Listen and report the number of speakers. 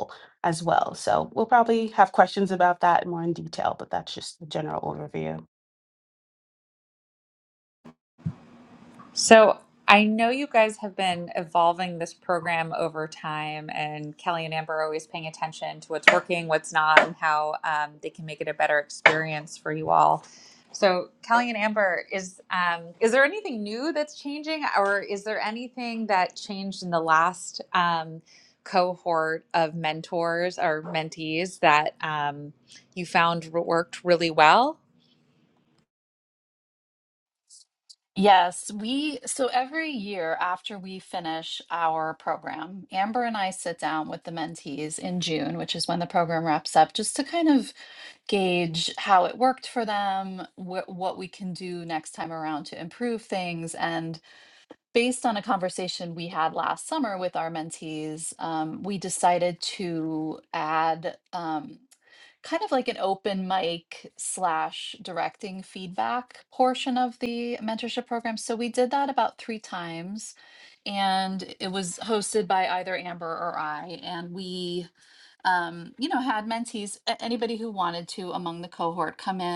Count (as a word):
three